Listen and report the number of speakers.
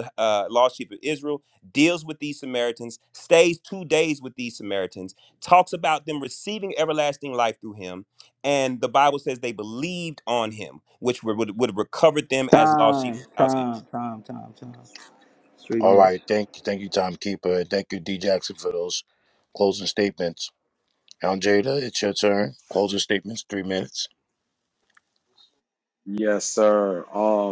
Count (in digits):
4